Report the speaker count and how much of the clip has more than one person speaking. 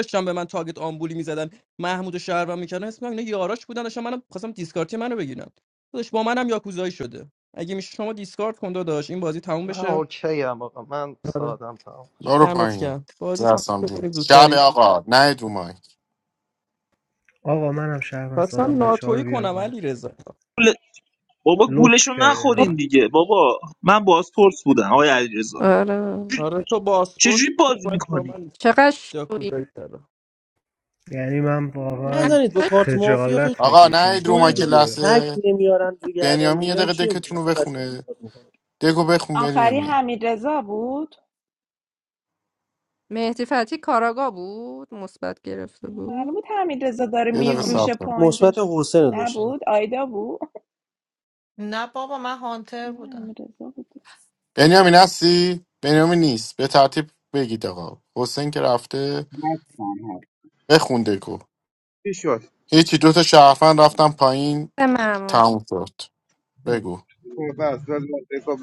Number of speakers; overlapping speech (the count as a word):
ten, about 20%